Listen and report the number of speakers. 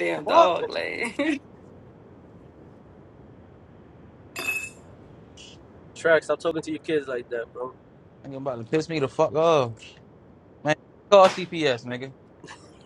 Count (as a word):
three